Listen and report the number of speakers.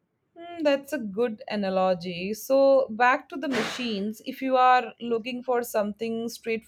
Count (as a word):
one